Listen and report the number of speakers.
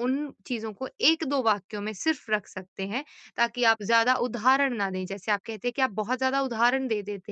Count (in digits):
1